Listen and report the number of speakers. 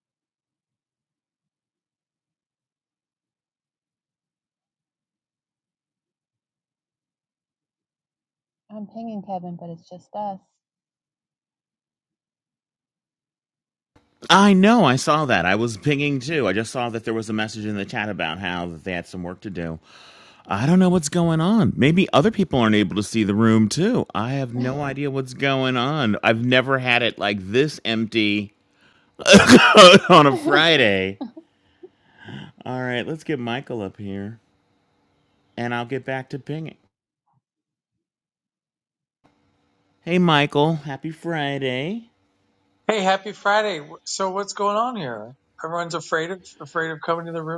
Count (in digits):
3